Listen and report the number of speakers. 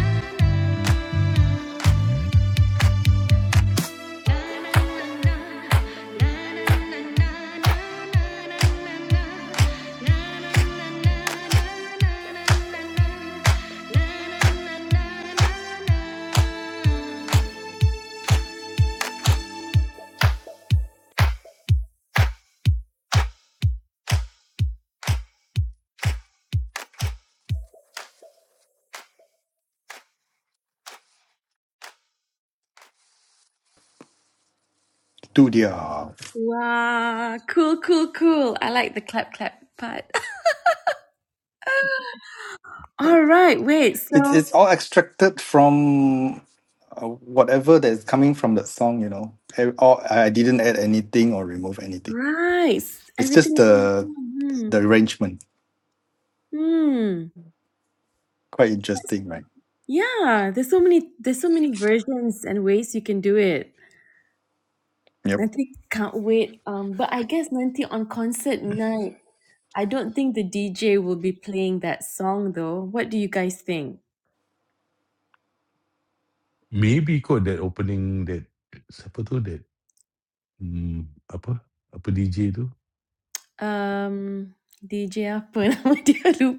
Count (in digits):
4